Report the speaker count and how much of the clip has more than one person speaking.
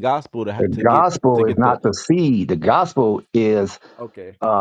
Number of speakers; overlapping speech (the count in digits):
2, about 19%